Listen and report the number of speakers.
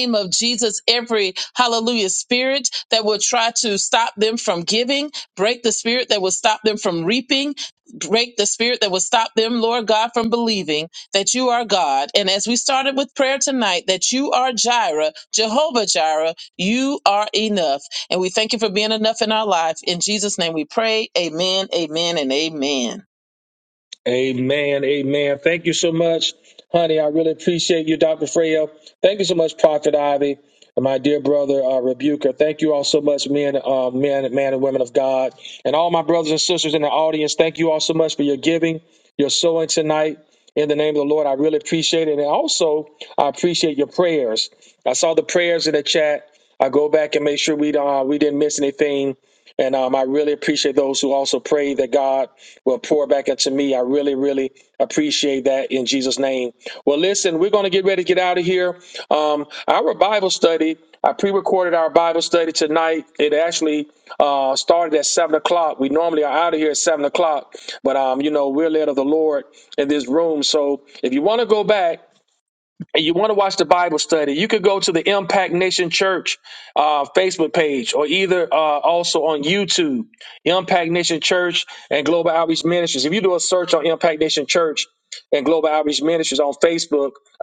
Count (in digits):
2